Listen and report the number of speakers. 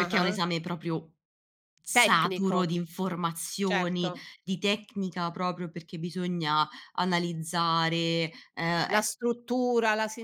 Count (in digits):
2